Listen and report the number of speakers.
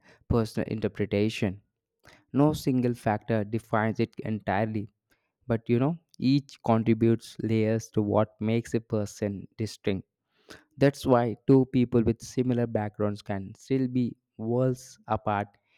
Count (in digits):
1